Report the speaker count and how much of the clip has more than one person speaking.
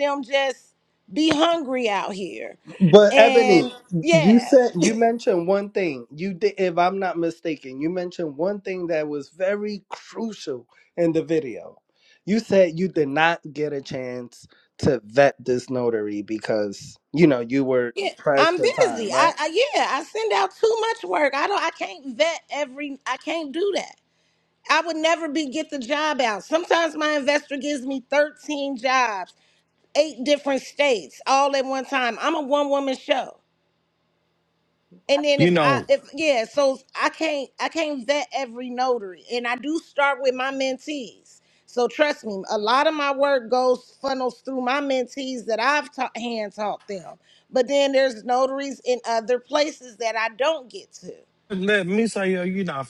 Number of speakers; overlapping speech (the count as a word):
three, about 5%